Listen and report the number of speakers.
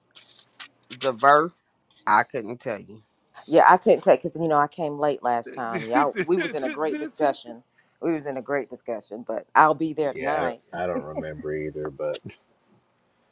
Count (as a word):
three